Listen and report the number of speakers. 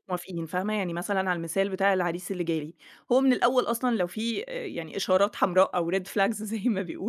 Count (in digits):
1